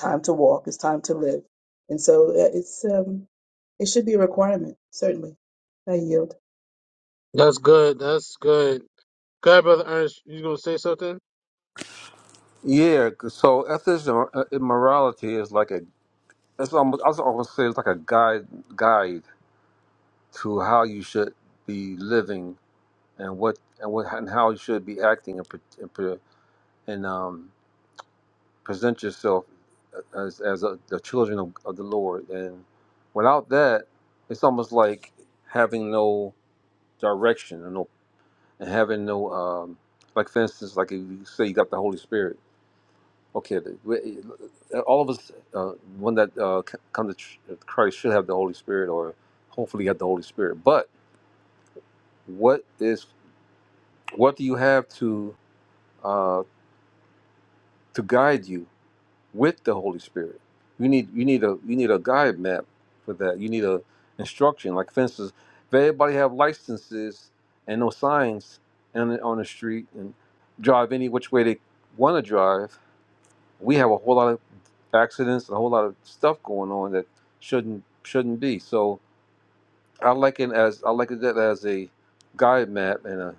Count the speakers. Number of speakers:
3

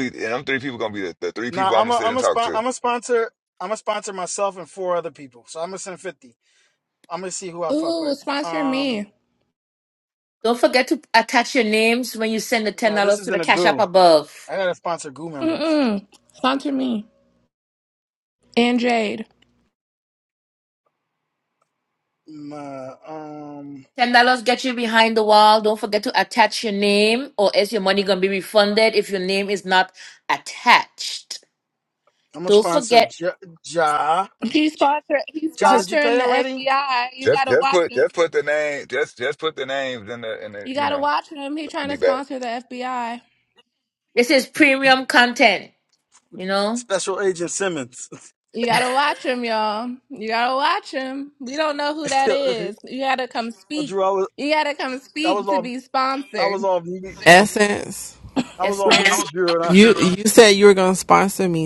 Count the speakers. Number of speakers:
5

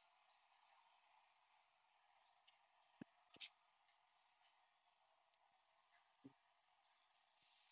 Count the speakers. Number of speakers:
0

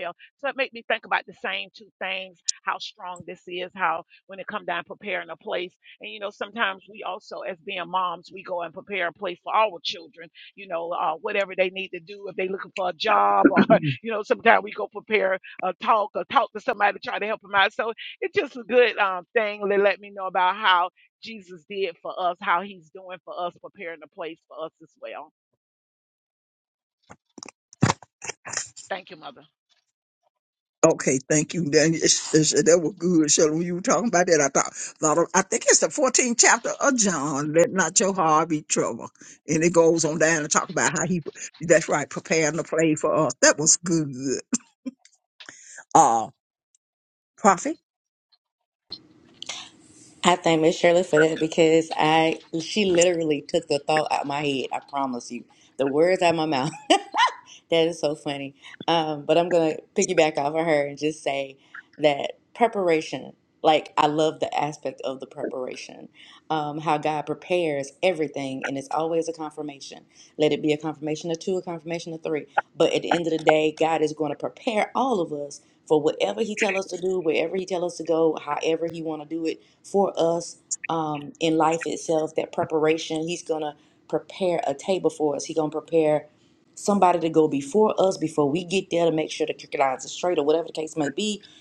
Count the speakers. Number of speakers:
3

